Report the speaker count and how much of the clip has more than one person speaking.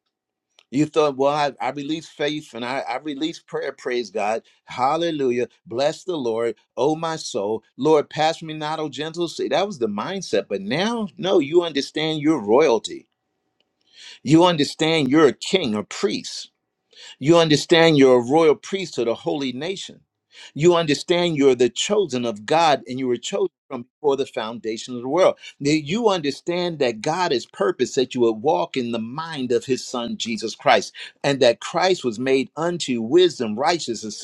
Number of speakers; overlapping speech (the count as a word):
one, no overlap